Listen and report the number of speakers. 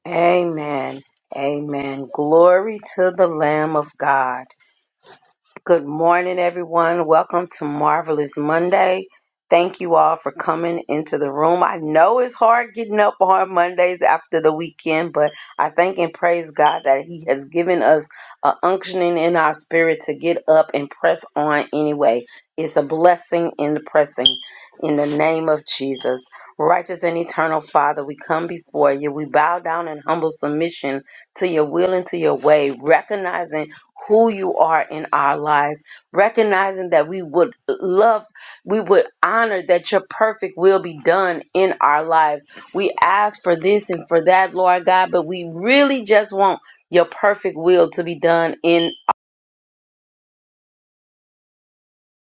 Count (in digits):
1